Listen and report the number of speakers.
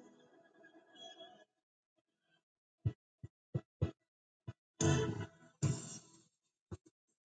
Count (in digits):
0